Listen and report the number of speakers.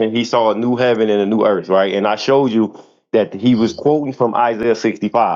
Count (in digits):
1